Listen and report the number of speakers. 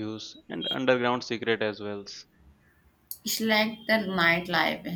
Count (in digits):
2